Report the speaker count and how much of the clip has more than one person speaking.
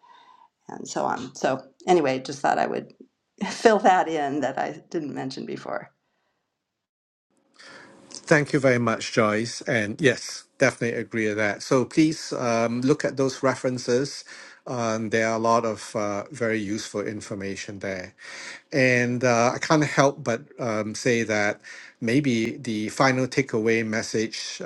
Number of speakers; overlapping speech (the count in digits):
2, no overlap